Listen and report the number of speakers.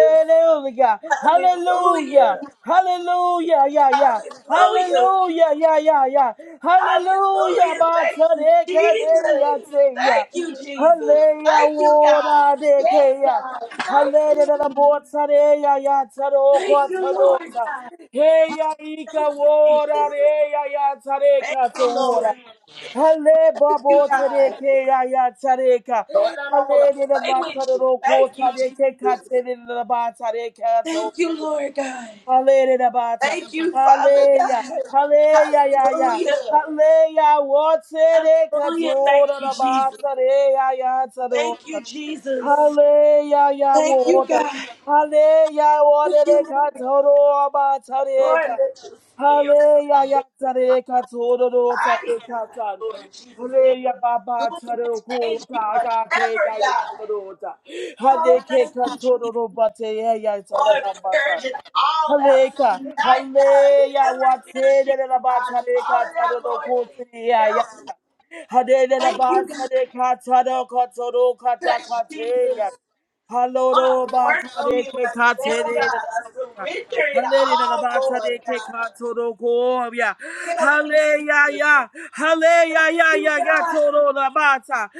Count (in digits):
2